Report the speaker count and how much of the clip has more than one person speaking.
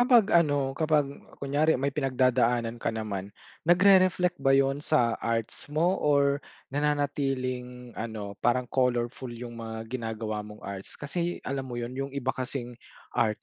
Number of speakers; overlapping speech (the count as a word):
one, no overlap